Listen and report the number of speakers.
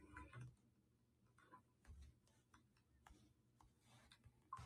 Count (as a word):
zero